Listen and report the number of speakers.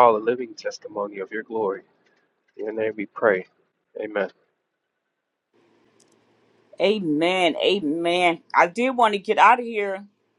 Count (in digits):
2